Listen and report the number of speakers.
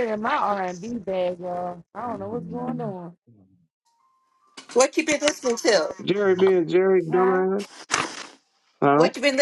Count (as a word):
three